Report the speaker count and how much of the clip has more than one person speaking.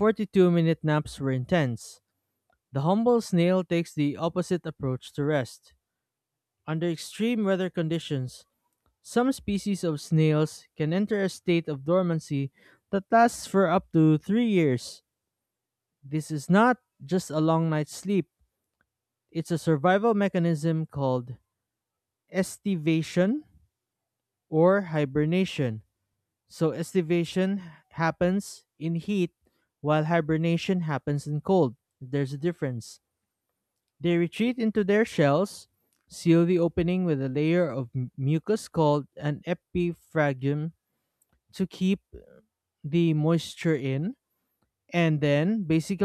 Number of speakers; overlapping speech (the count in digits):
1, no overlap